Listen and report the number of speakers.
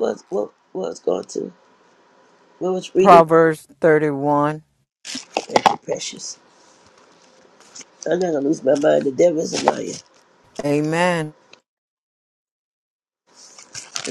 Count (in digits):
2